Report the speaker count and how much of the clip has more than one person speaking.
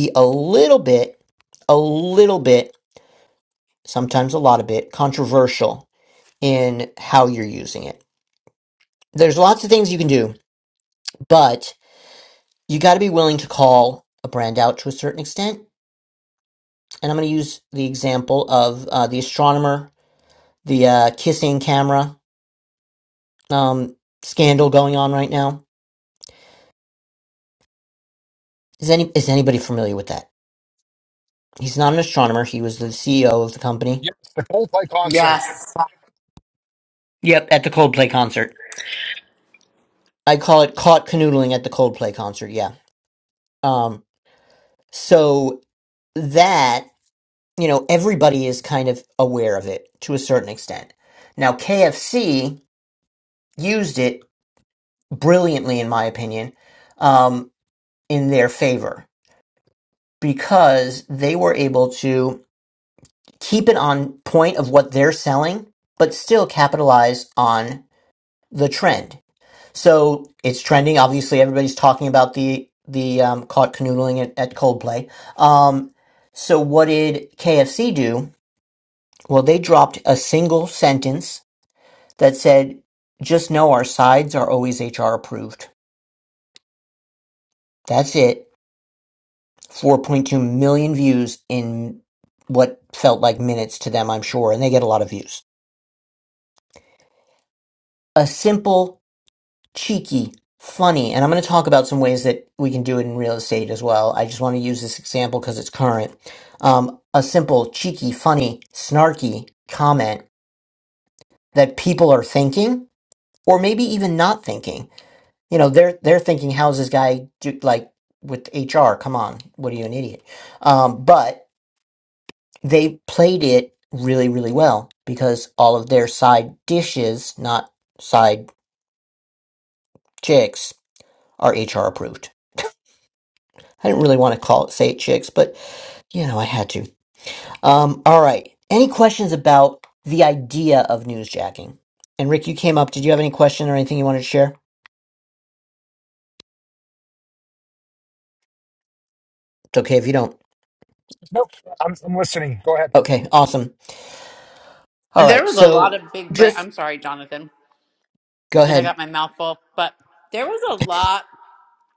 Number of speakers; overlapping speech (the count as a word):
three, about 1%